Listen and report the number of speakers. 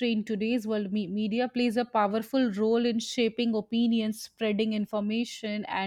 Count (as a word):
one